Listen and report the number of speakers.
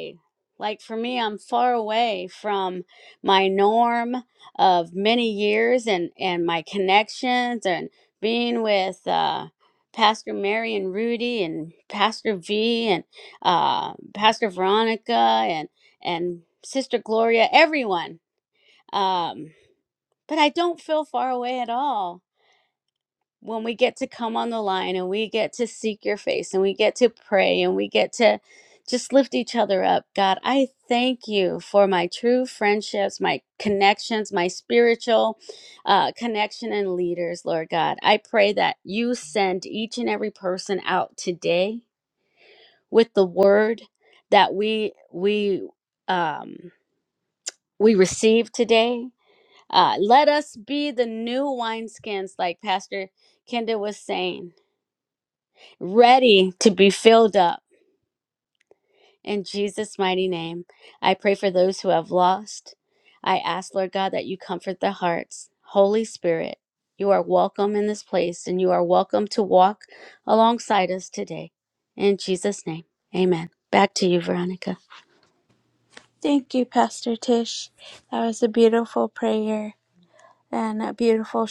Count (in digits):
2